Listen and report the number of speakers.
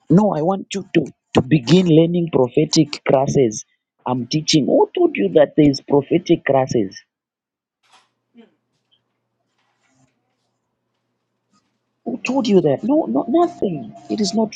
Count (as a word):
one